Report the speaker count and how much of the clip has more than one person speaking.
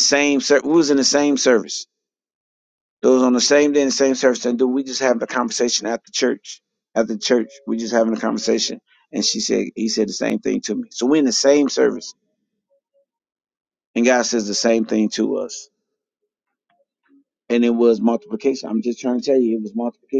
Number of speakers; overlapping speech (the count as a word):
one, no overlap